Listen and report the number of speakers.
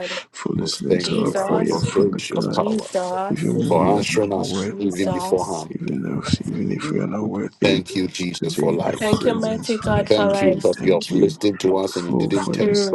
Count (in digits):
3